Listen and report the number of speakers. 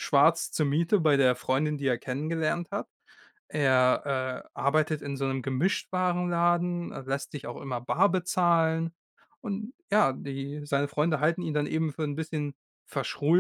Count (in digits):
1